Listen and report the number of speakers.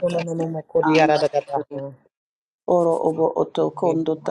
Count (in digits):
2